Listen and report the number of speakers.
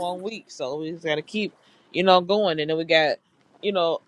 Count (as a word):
one